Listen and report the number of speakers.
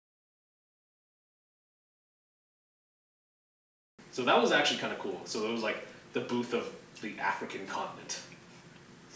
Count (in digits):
1